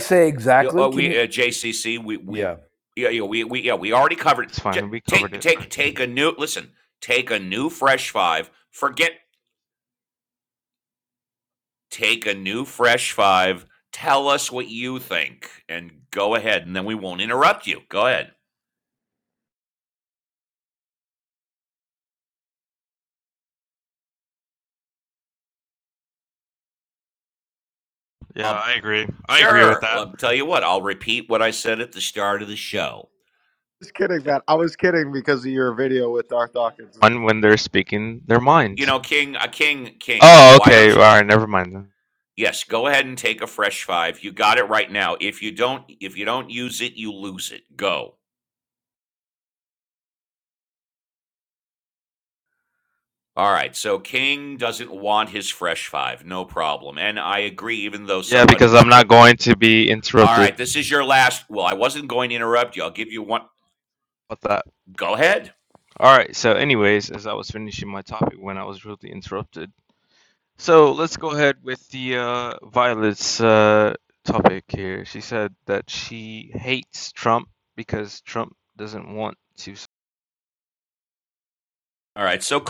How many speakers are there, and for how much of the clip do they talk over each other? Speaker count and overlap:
4, about 6%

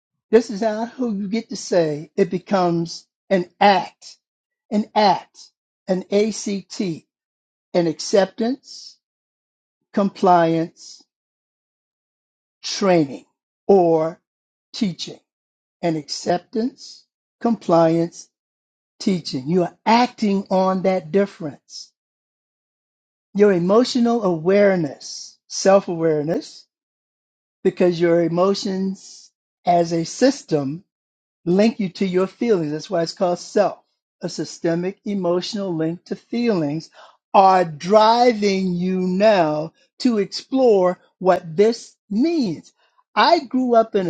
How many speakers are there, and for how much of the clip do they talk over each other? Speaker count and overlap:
1, no overlap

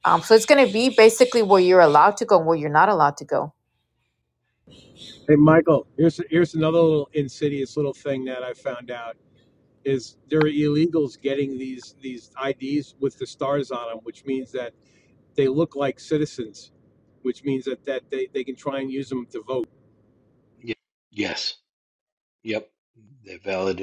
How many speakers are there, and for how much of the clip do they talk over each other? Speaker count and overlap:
3, no overlap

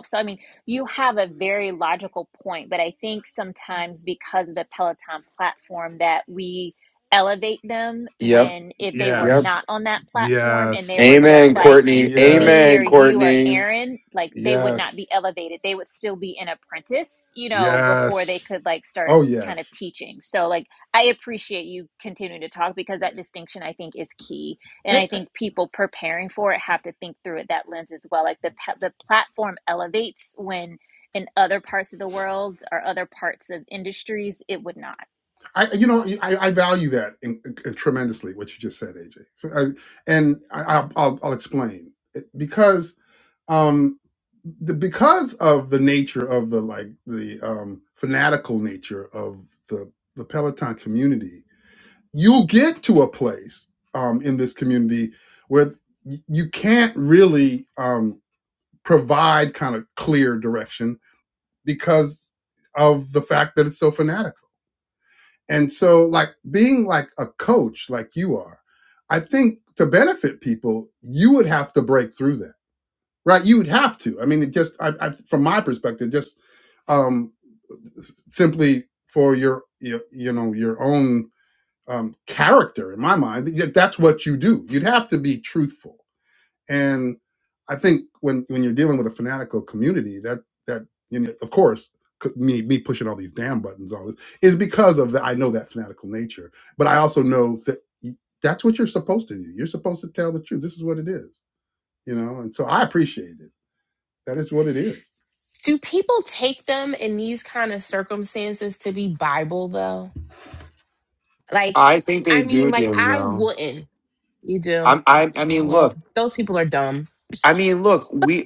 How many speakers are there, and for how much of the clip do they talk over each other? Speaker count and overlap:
4, about 7%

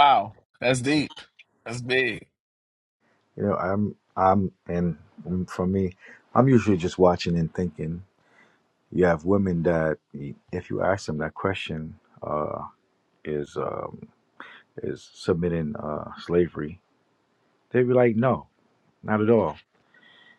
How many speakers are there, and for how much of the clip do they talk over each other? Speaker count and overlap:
2, no overlap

